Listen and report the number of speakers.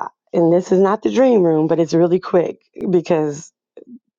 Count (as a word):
one